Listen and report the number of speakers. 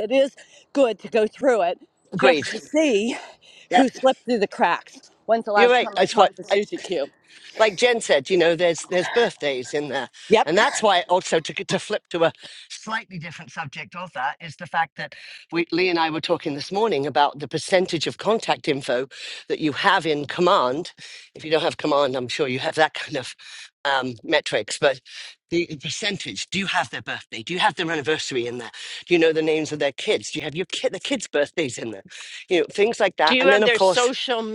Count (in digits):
3